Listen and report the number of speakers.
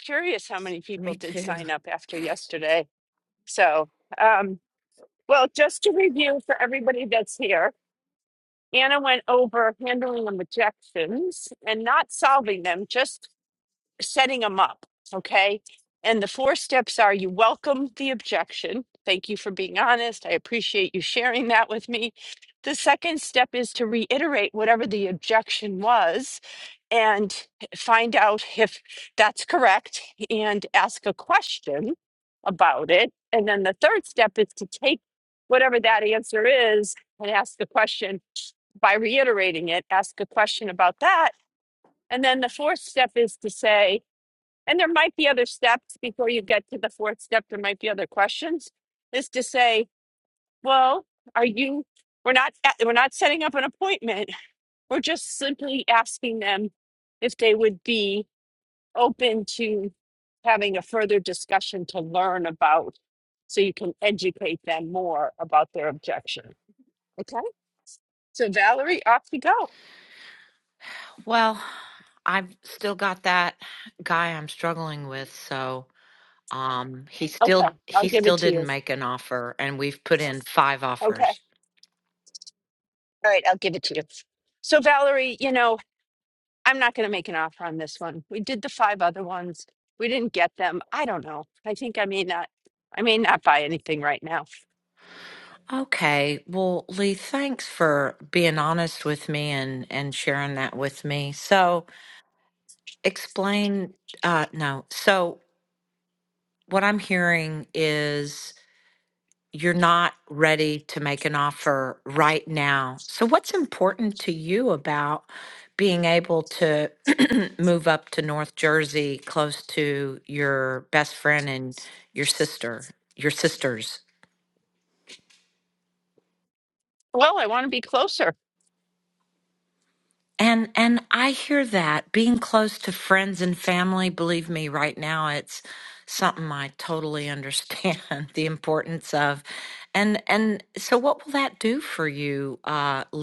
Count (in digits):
2